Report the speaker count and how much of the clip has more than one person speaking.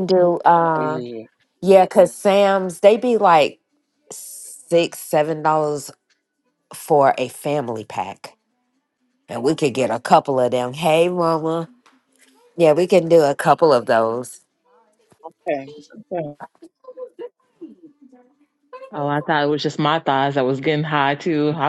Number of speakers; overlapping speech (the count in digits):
3, about 2%